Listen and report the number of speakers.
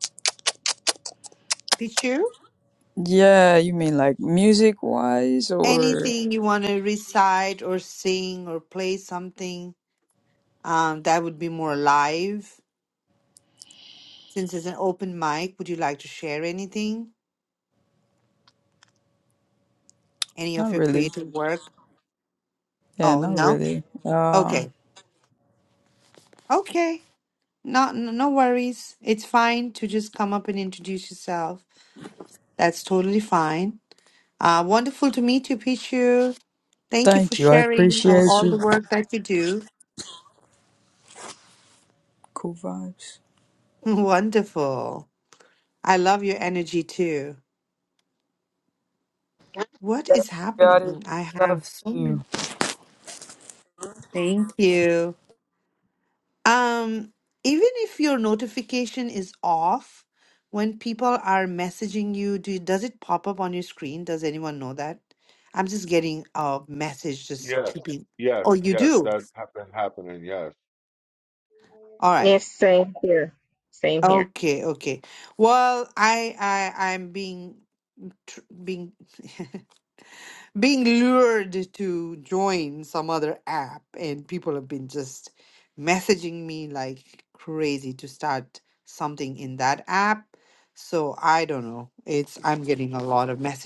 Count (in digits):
4